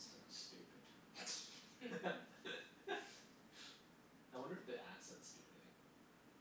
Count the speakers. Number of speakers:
1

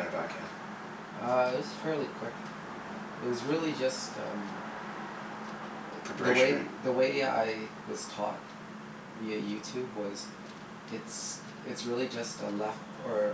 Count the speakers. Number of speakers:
2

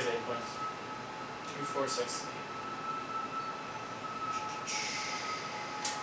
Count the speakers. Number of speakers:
1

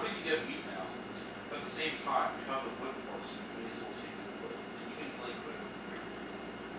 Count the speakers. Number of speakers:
1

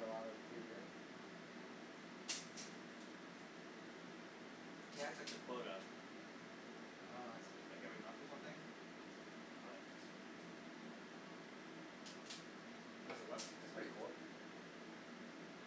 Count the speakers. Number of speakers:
2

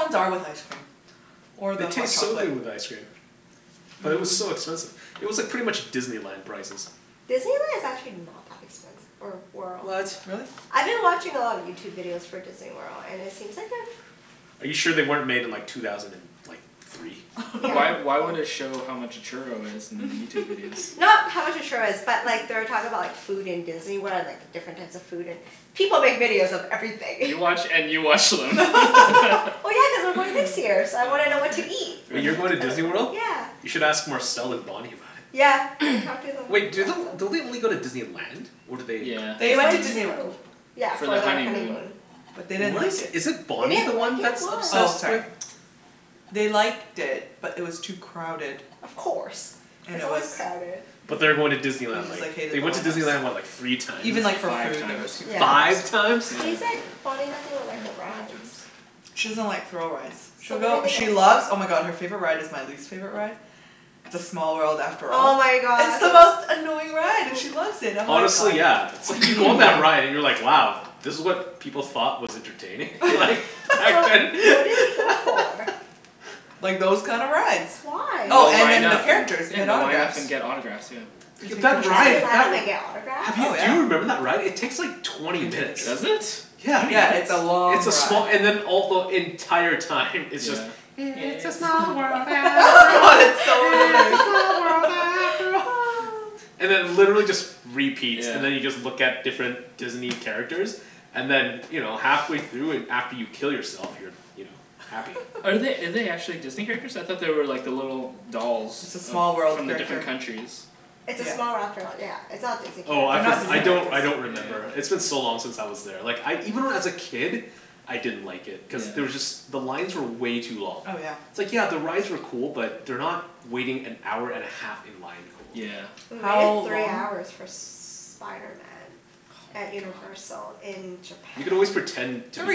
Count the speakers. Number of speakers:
4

